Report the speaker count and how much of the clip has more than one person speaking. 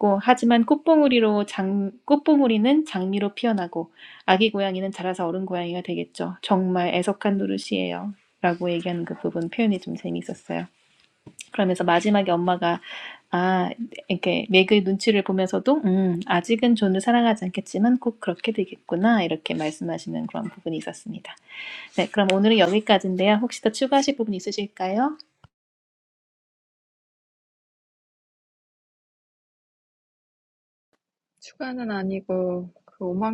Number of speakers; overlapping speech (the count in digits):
2, no overlap